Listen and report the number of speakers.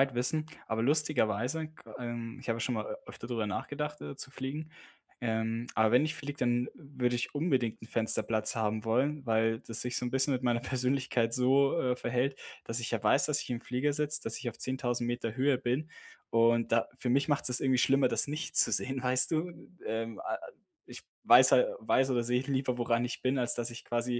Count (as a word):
one